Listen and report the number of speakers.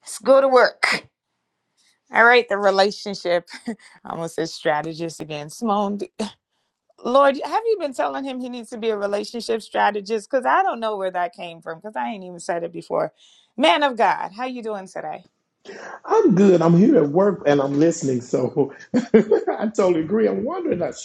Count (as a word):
two